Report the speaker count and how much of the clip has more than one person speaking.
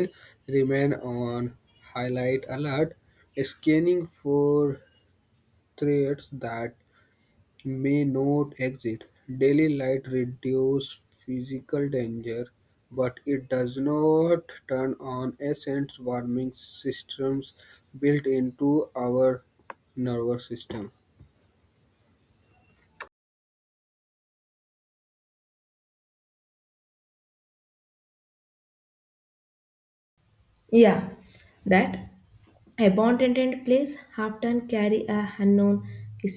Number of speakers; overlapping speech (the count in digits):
2, no overlap